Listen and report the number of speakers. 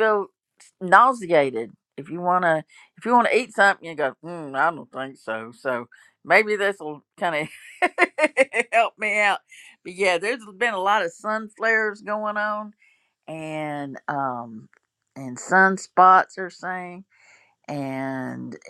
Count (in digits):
1